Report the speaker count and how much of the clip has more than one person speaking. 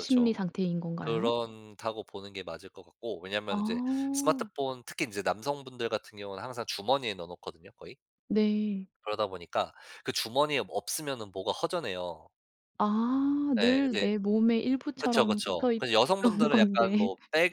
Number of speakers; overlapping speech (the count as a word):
two, about 20%